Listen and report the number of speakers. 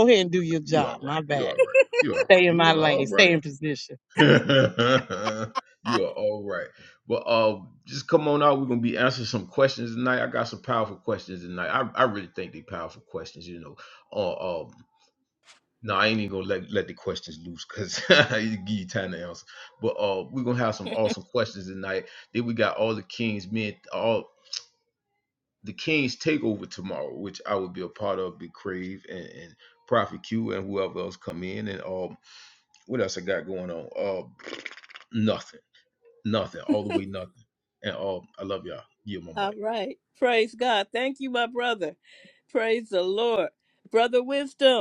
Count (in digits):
3